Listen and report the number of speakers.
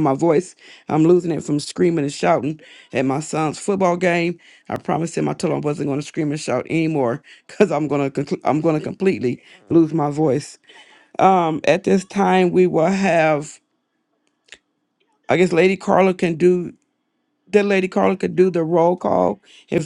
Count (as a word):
one